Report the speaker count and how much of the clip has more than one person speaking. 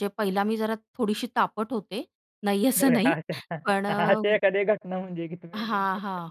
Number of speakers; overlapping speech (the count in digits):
2, about 12%